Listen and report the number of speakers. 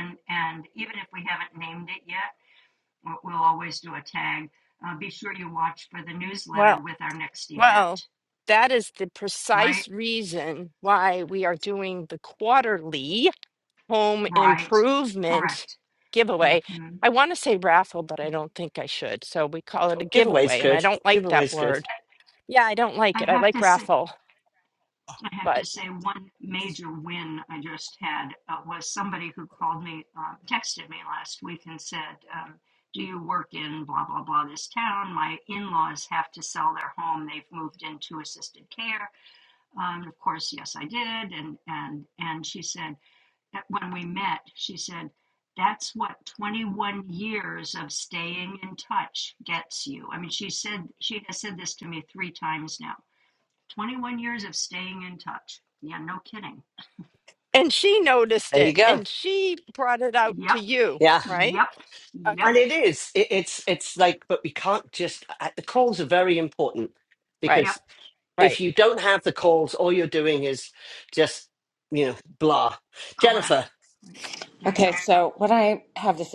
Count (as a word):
four